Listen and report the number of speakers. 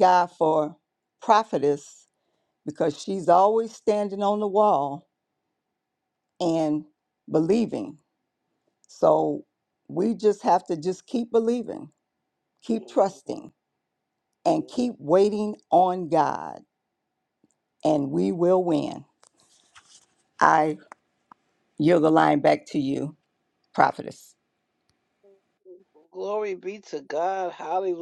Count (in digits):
2